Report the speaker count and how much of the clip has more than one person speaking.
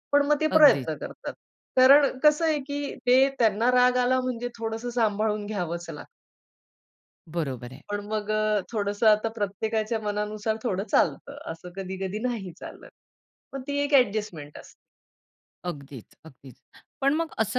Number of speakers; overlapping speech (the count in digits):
2, about 2%